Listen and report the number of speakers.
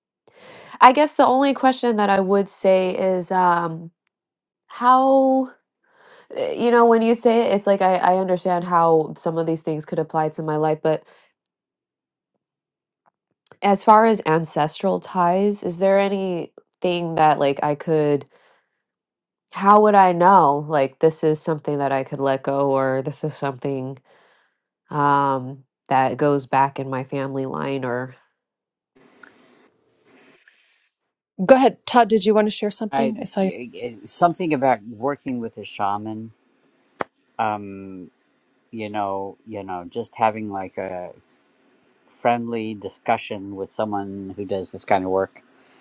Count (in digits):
3